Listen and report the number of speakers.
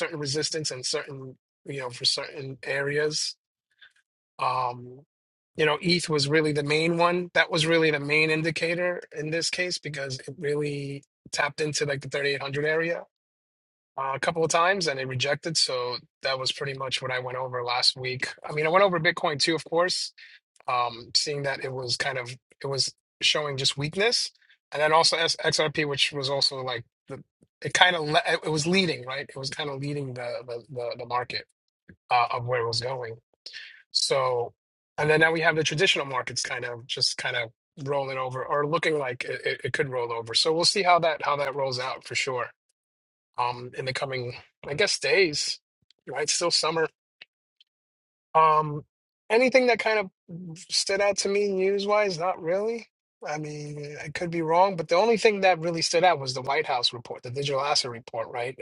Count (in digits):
1